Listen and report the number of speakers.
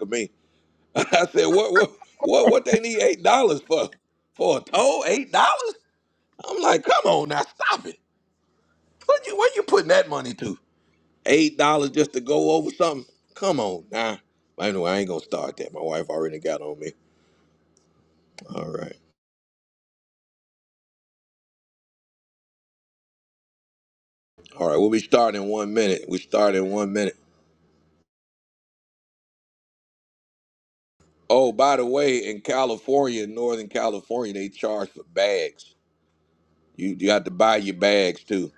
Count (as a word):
one